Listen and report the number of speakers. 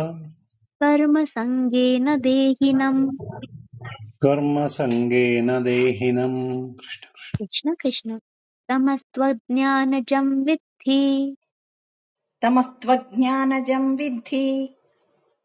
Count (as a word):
three